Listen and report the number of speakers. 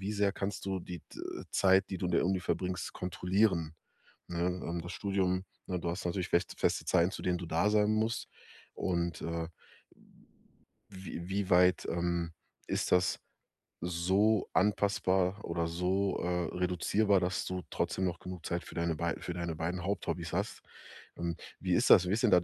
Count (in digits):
1